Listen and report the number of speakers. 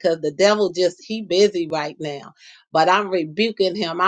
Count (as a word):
one